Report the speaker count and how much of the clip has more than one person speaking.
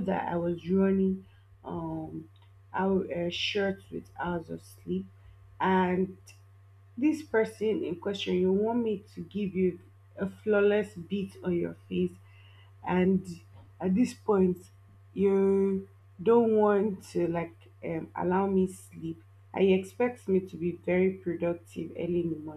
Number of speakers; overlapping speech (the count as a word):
one, no overlap